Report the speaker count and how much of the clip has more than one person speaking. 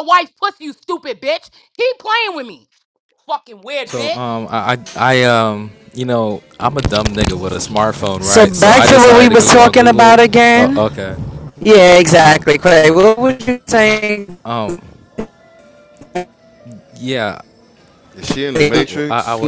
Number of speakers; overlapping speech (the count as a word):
four, about 19%